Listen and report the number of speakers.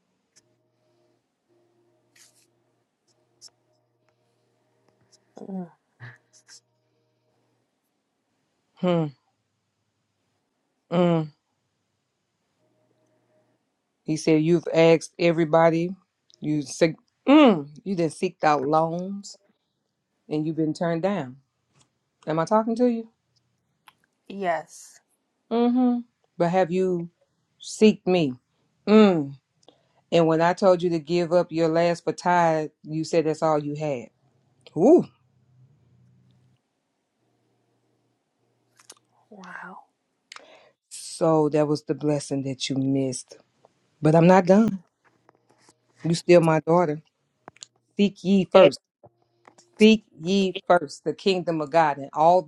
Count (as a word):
two